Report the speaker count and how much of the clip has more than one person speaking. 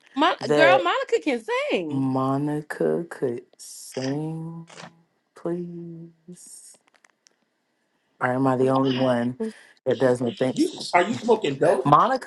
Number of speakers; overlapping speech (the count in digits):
3, about 10%